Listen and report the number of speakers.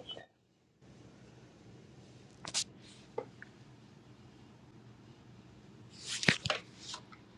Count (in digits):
0